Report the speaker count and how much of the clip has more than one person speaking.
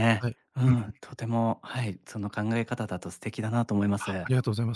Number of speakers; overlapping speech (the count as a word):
two, about 13%